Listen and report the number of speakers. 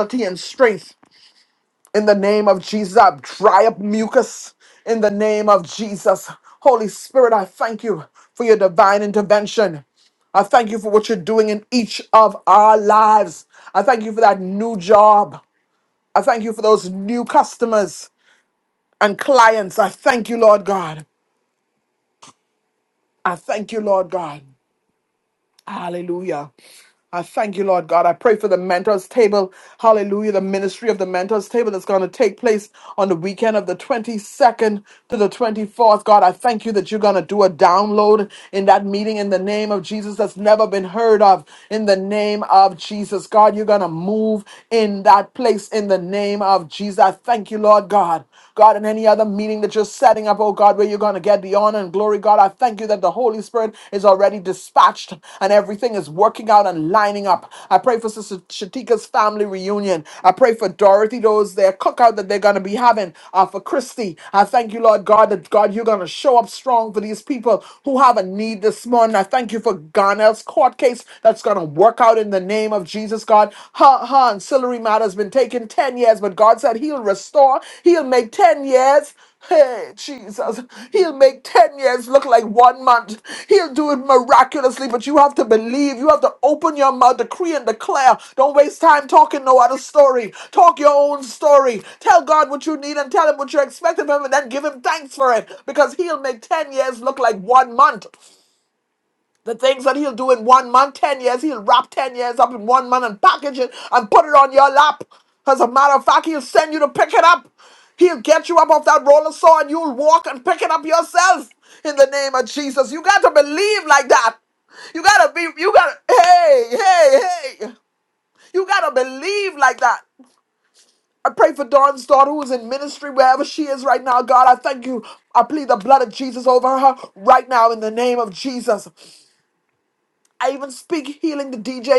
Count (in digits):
1